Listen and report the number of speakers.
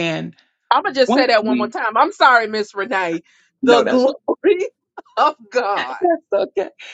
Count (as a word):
two